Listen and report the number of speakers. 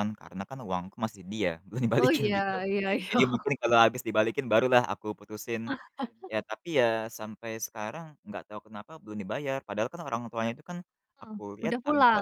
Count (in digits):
2